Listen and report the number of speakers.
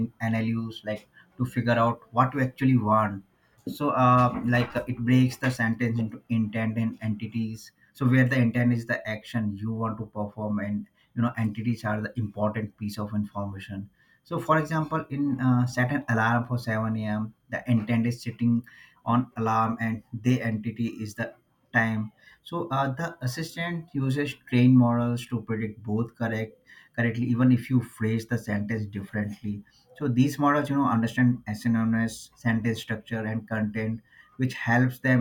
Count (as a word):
one